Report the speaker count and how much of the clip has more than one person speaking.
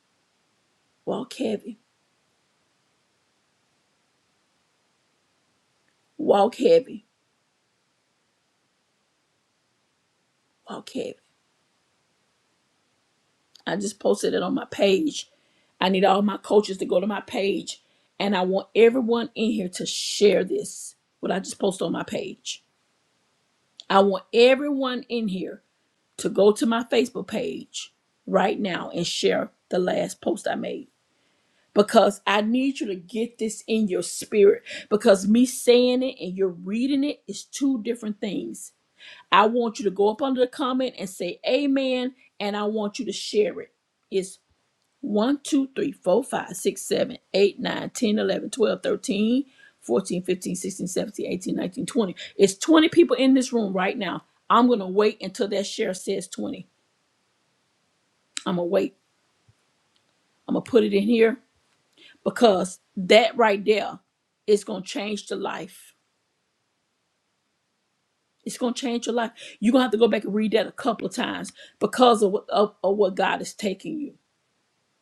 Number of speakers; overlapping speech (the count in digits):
1, no overlap